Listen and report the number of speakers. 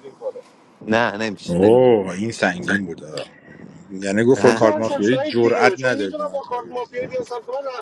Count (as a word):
three